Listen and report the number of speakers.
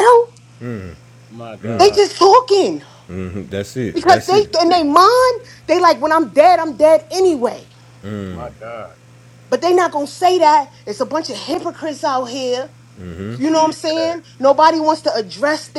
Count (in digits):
3